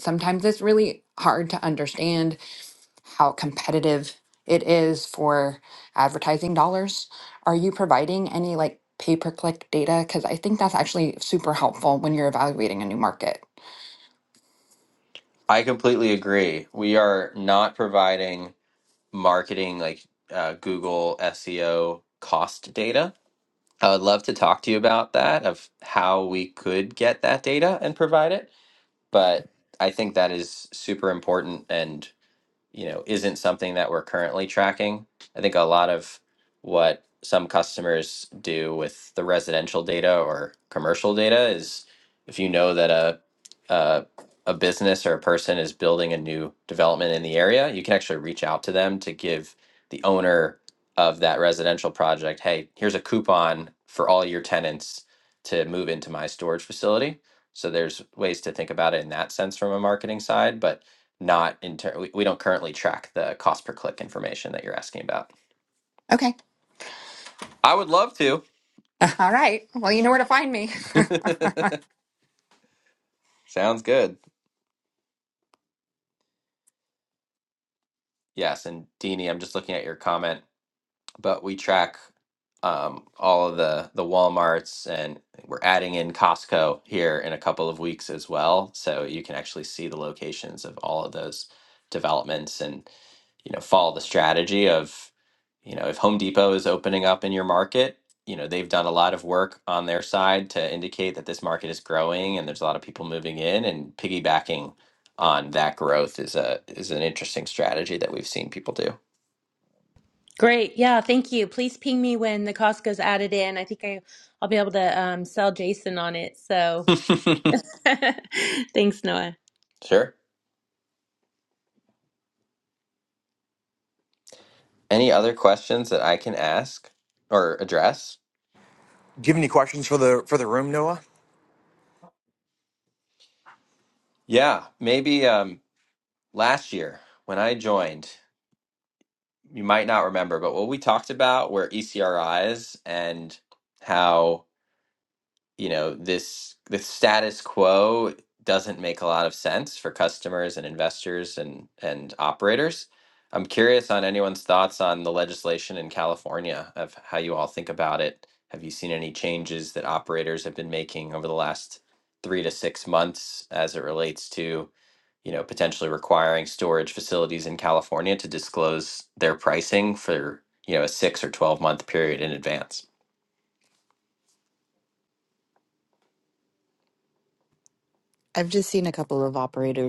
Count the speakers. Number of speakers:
5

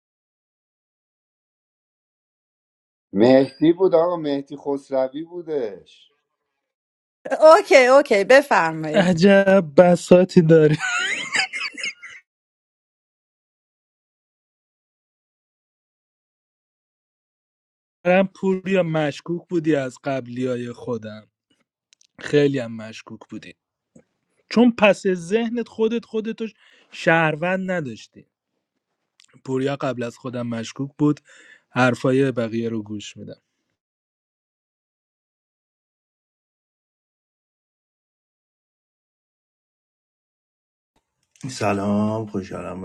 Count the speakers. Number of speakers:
4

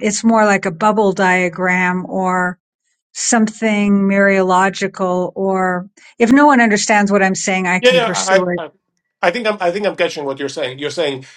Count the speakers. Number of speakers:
2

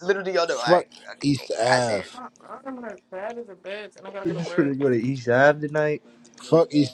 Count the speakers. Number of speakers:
4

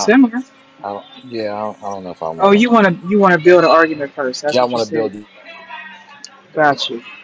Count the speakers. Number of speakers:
2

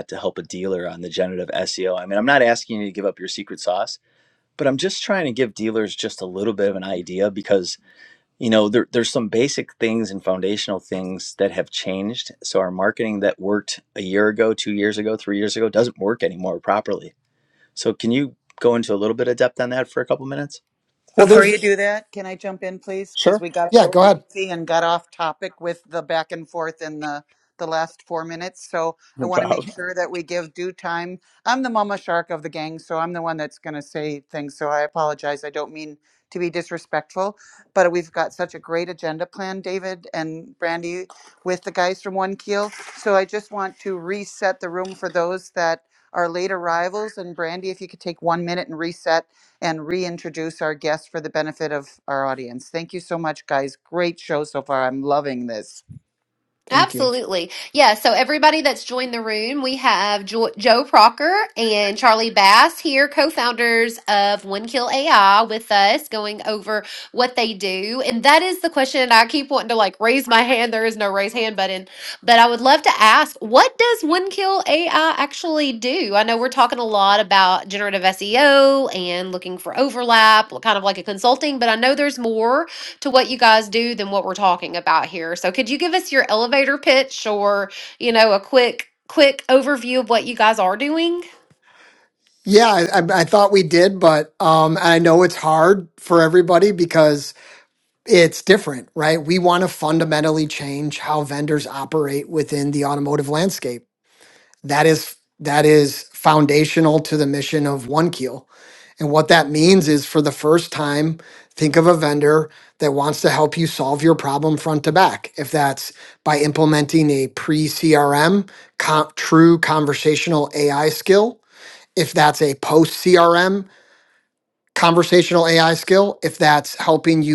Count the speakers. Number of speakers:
4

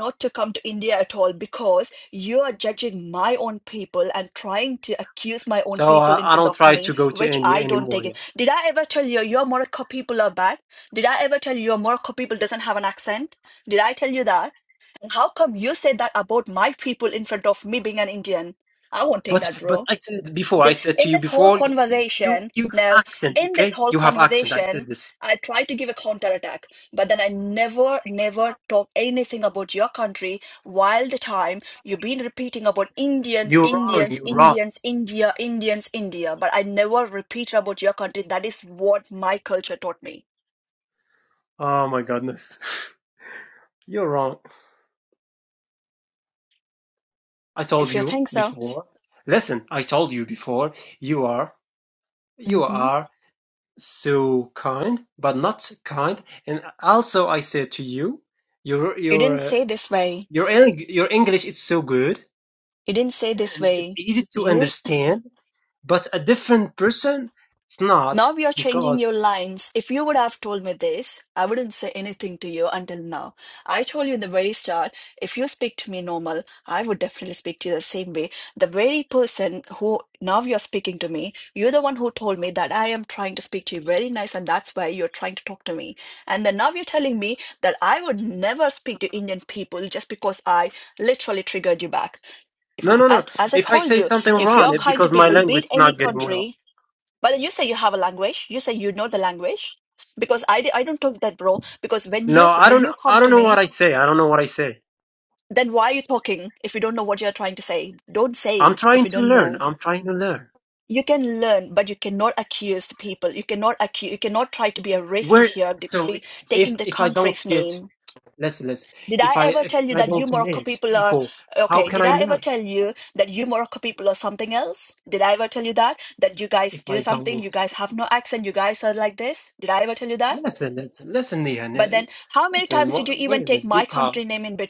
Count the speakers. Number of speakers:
2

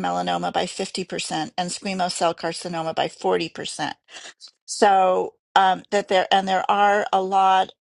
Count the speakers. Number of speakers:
1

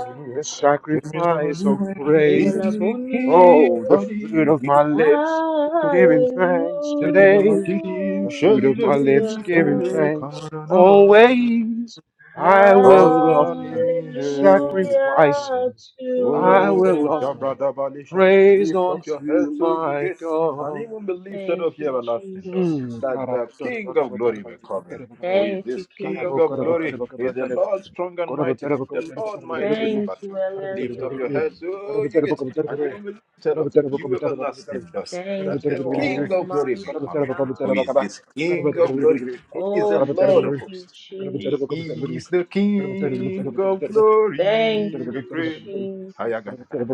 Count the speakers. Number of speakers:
3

